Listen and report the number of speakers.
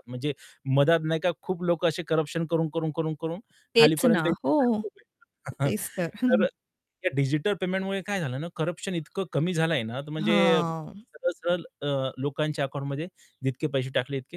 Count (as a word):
two